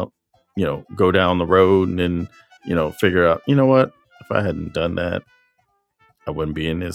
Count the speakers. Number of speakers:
1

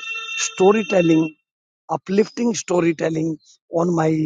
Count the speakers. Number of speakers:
1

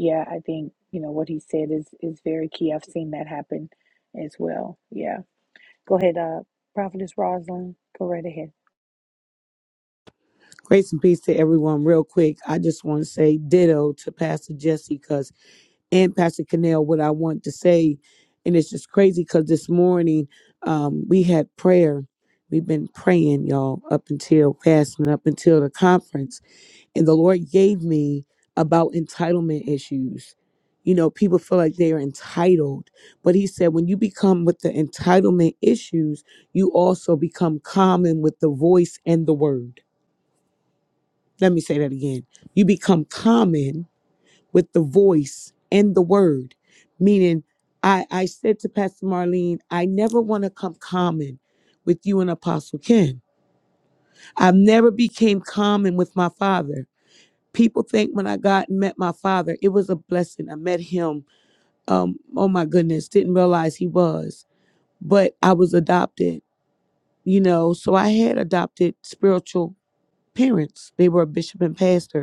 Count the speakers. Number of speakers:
2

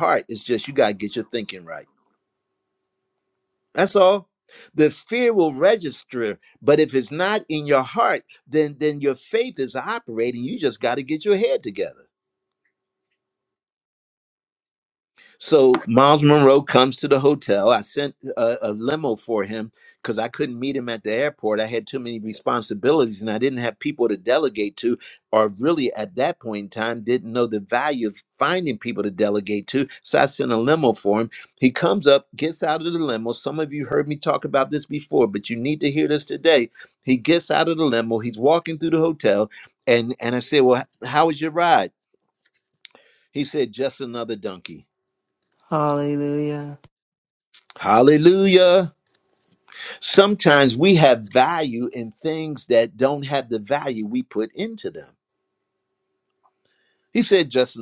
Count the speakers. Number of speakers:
2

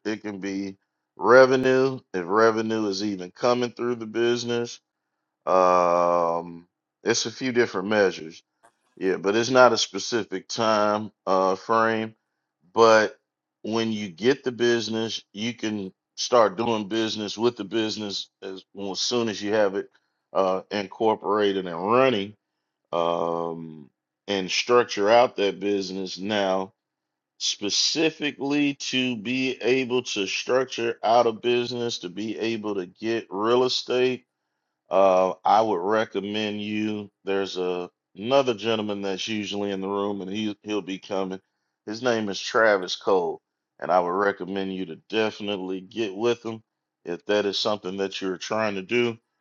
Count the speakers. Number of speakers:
1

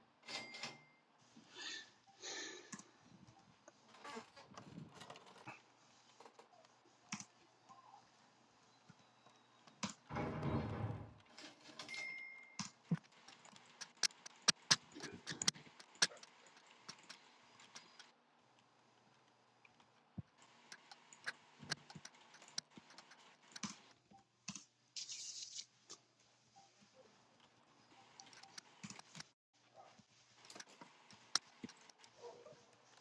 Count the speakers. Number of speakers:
0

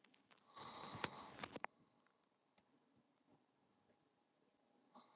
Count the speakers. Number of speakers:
0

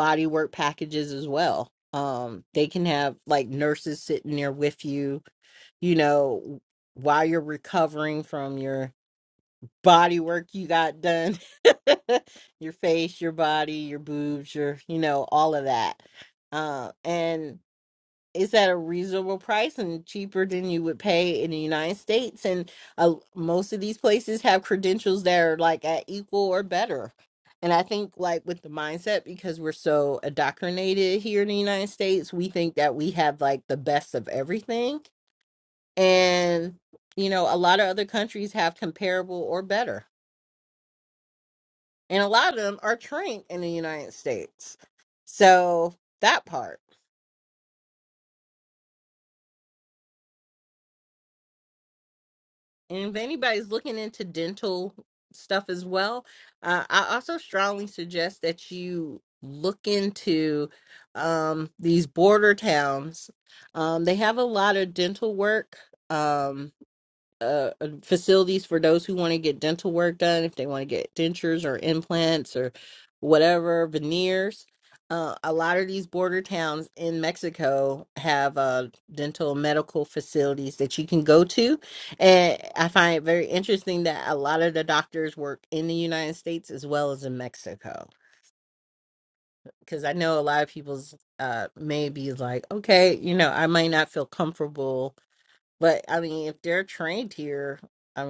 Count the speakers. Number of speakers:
1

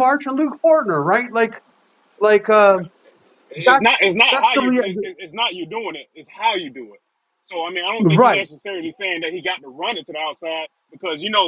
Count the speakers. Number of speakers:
2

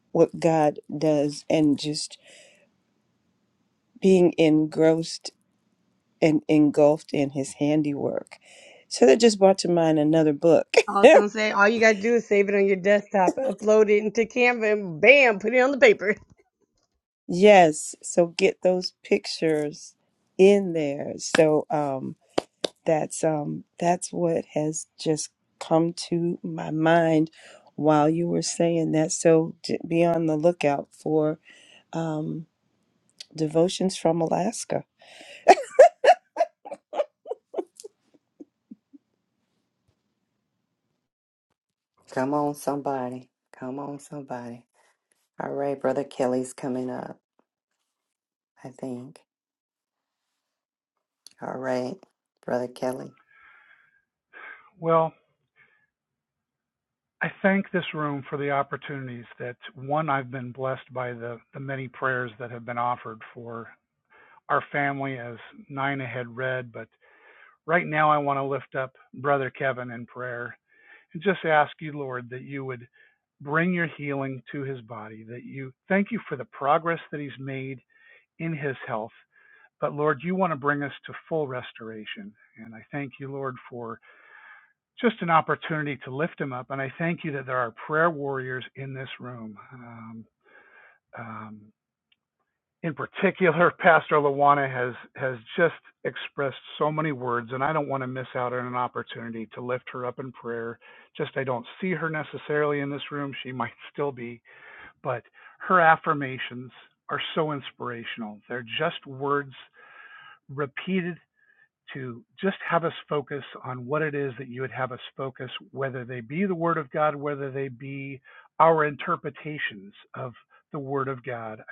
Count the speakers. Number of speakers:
4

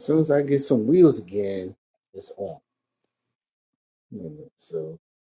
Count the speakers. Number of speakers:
1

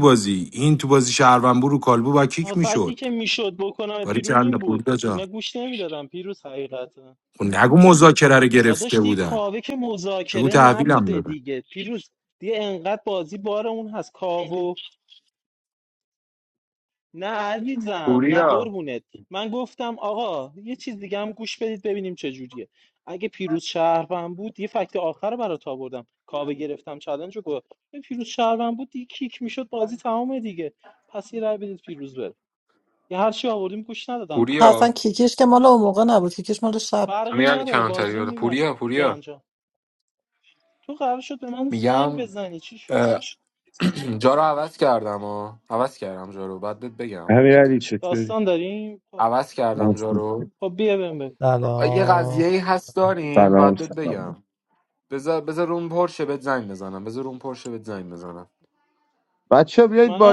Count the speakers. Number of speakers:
6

